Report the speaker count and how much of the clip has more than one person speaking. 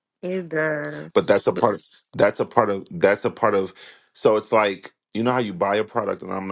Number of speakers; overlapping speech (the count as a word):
two, about 4%